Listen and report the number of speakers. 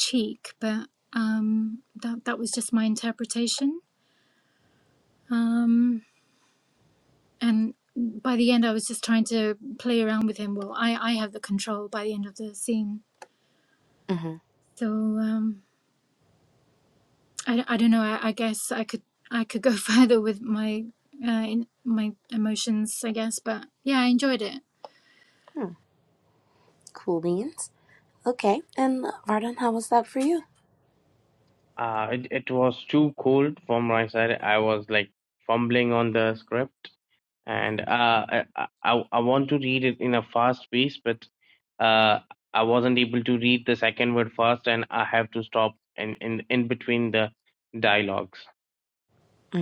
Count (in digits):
3